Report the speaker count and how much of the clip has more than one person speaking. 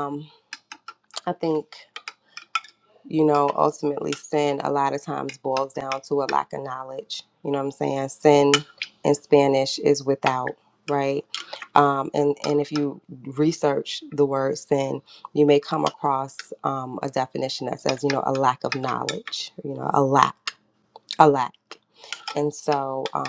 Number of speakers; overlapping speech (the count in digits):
1, no overlap